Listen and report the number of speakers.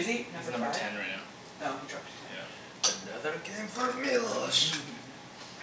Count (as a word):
three